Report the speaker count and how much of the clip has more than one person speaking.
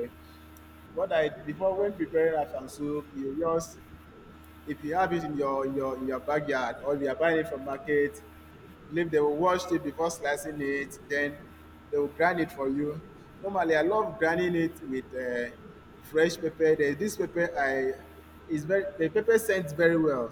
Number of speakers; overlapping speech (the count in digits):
1, no overlap